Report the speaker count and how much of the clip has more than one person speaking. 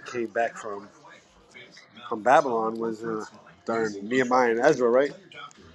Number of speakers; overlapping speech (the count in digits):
1, no overlap